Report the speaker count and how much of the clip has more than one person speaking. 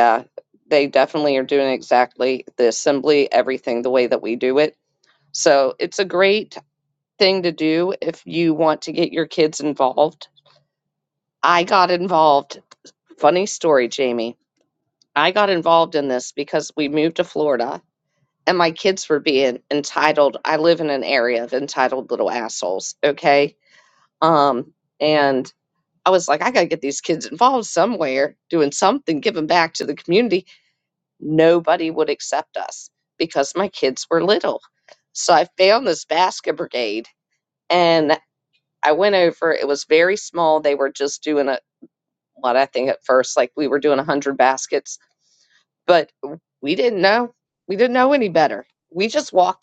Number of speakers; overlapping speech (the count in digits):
1, no overlap